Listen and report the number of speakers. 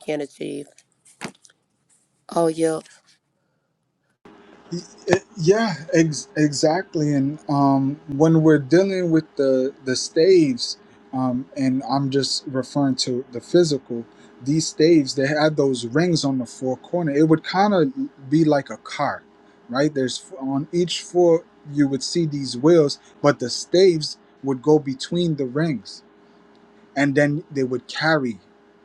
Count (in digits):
2